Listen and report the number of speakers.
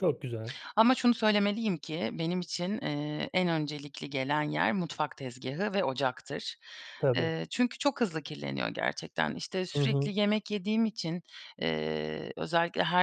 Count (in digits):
2